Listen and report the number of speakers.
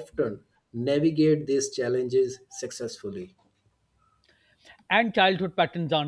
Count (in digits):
2